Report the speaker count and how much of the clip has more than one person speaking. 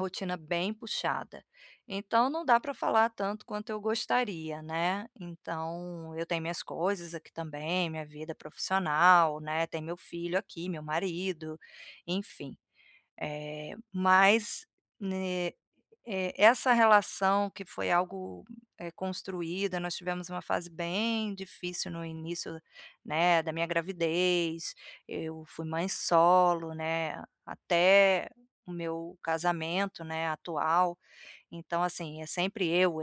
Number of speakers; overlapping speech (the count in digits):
1, no overlap